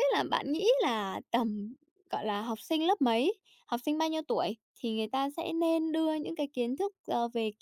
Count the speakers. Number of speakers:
one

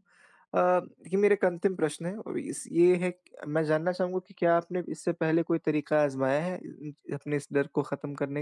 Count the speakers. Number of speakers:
one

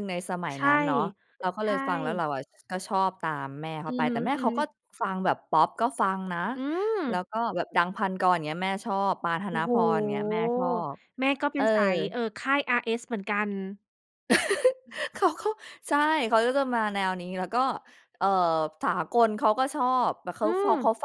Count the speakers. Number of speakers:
two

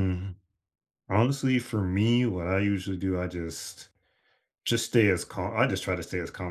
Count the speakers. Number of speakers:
one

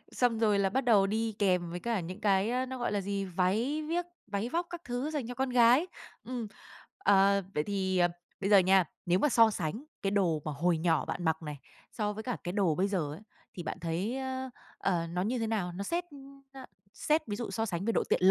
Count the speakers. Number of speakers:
one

